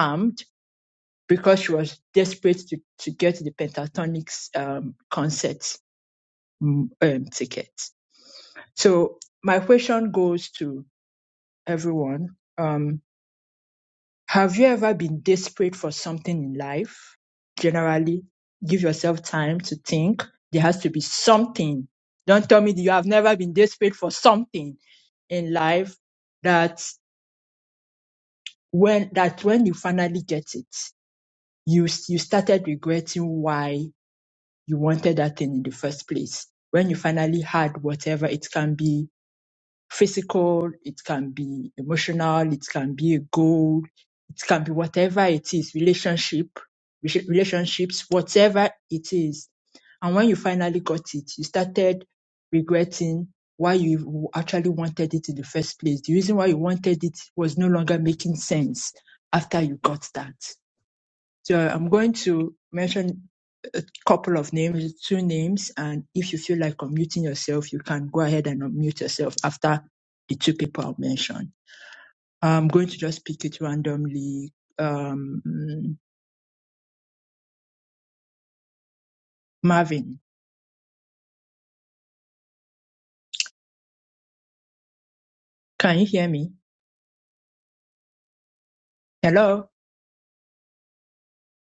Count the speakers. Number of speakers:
one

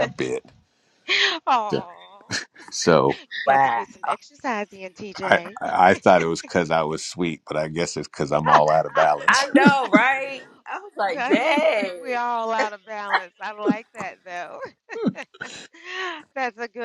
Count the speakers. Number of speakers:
three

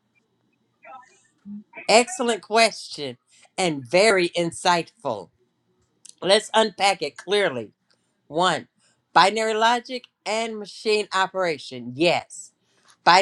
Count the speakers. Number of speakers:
one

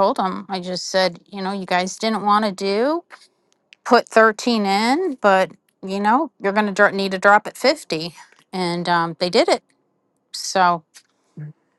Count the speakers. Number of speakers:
one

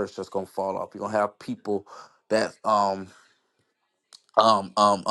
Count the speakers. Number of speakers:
one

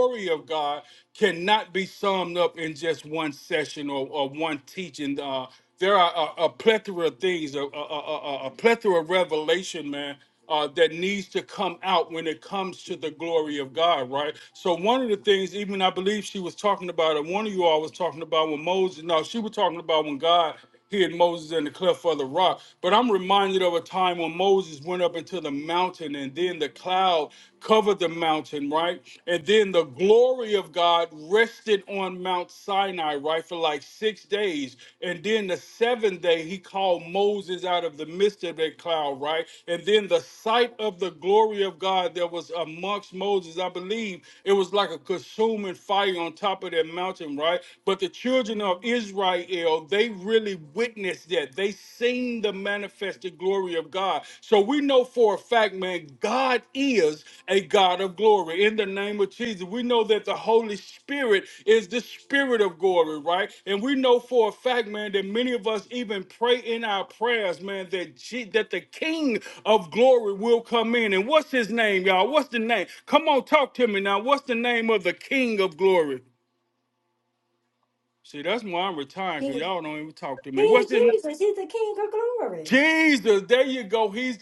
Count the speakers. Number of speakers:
two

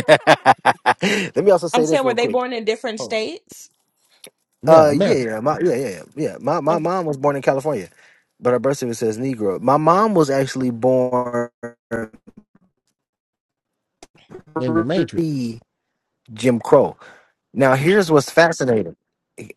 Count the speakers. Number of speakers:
three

